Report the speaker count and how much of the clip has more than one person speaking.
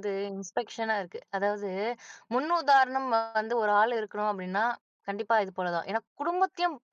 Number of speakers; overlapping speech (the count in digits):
1, no overlap